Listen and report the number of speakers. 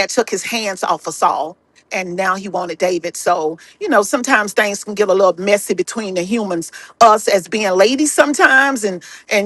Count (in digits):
1